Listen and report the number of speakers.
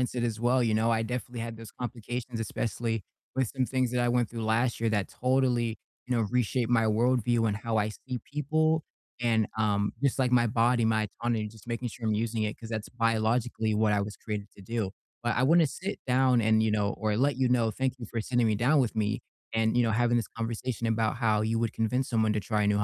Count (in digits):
1